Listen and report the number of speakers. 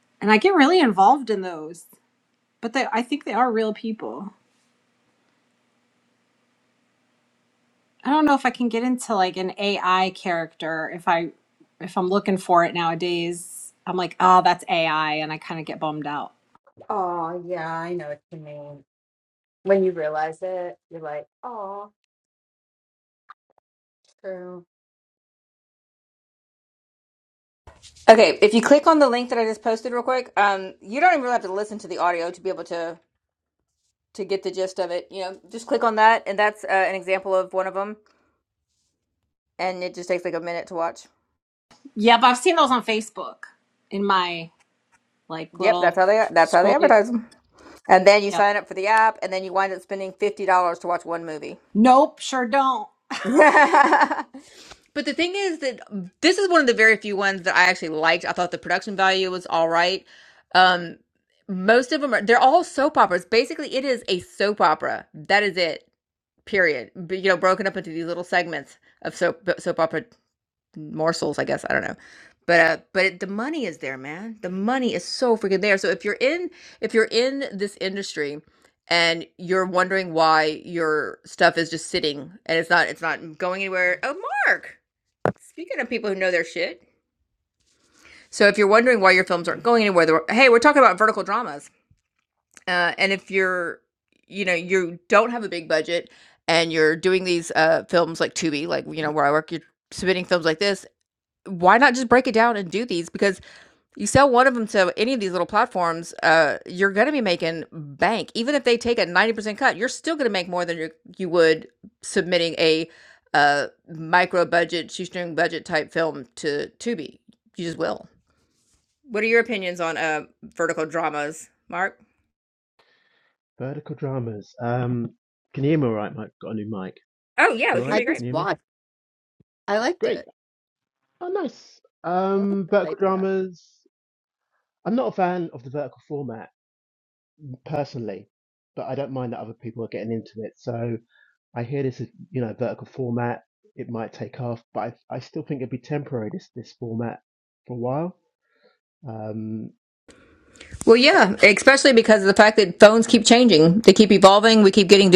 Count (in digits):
4